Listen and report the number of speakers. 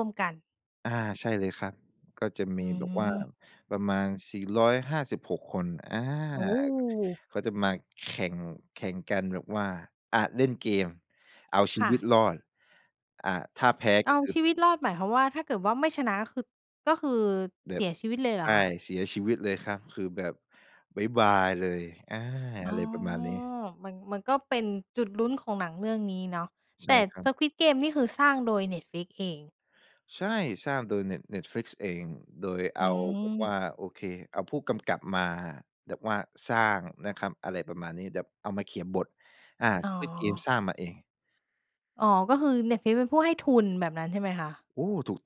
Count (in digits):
2